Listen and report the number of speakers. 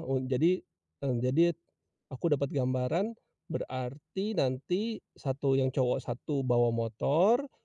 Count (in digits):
1